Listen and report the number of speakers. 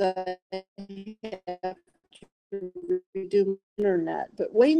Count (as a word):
one